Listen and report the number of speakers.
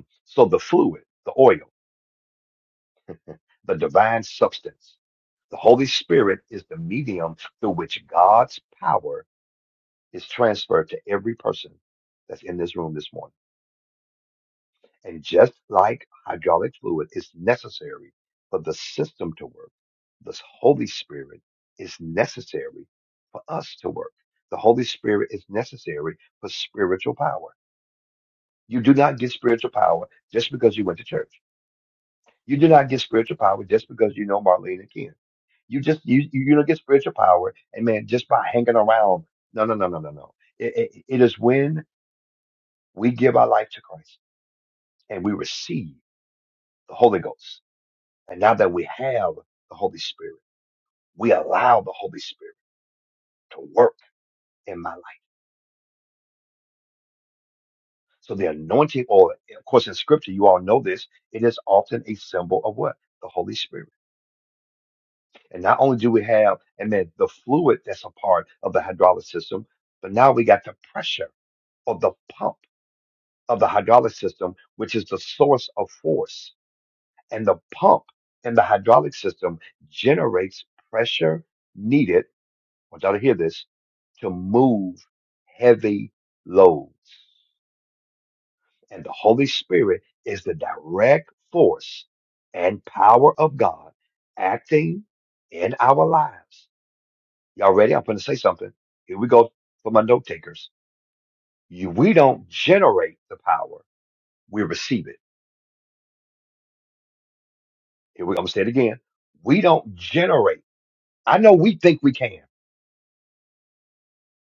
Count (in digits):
1